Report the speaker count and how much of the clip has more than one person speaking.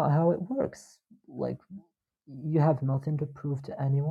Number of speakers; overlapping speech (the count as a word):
one, no overlap